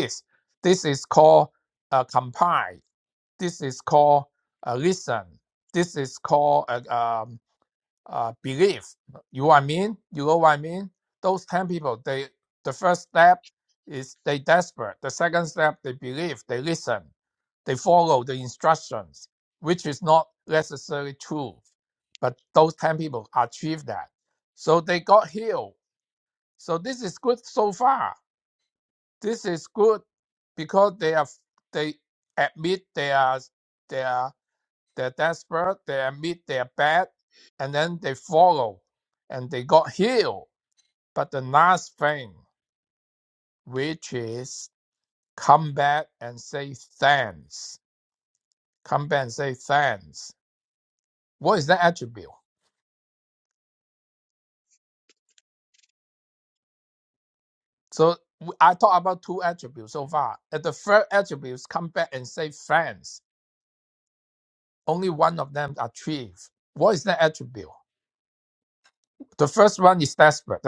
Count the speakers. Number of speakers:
1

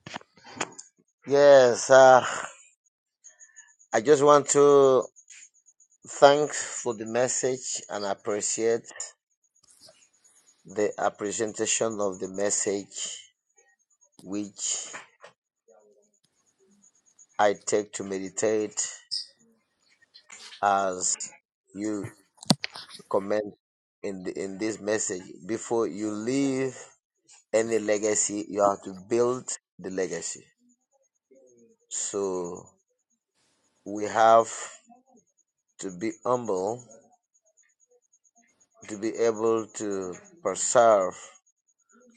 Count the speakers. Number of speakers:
1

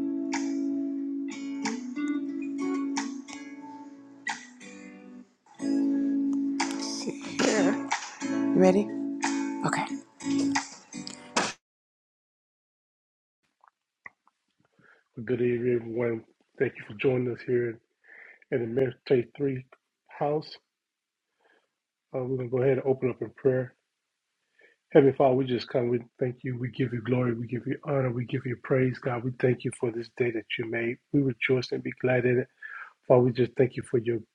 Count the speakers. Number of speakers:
2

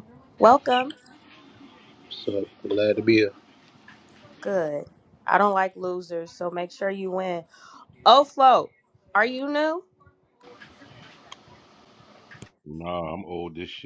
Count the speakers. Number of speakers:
3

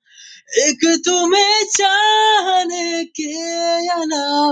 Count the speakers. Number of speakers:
1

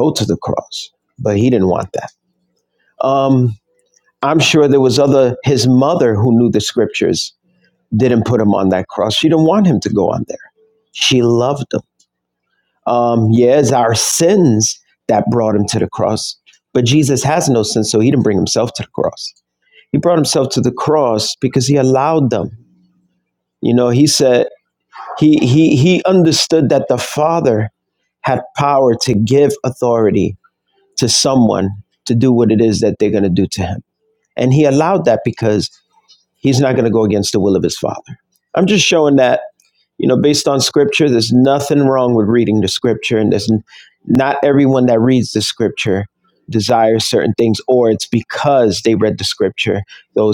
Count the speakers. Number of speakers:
1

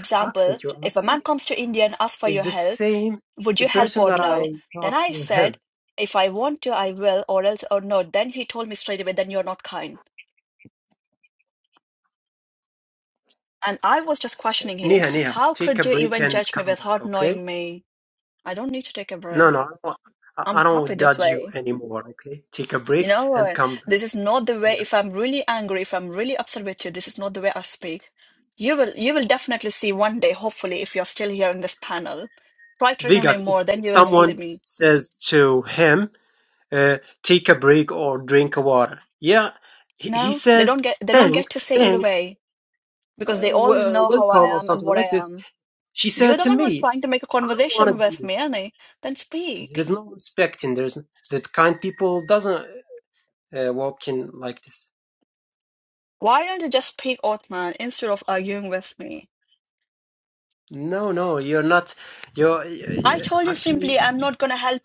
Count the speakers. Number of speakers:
2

